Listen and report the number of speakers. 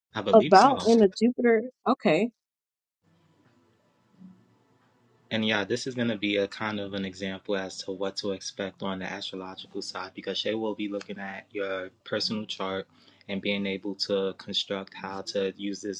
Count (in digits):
2